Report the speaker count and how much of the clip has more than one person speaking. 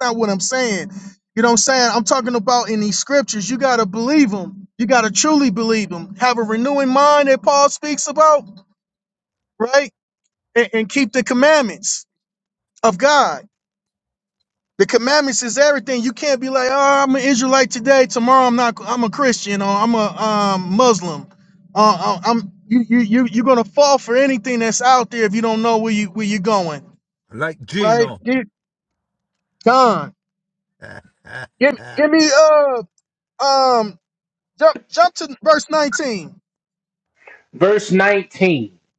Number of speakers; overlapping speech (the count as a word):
three, about 2%